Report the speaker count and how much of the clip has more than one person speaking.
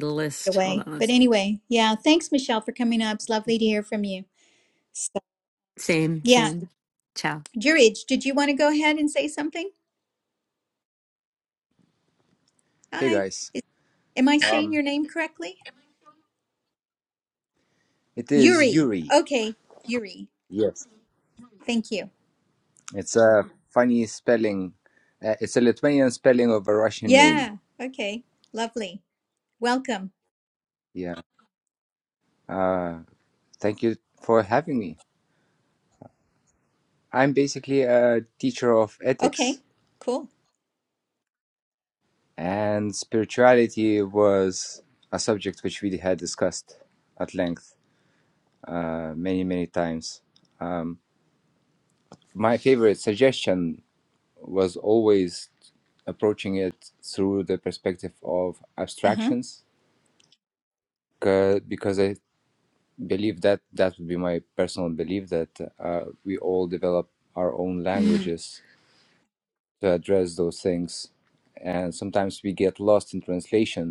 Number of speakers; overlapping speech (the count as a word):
three, about 4%